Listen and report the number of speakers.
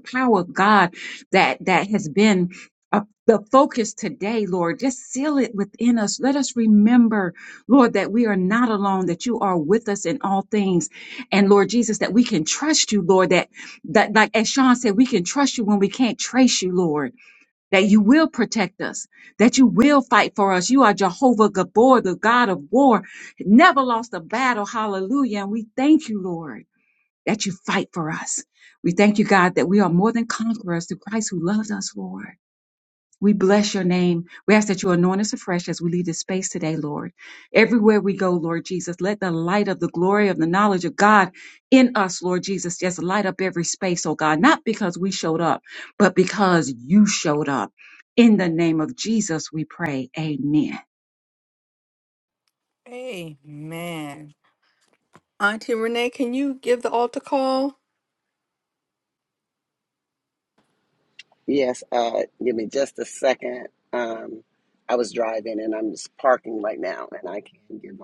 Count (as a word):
three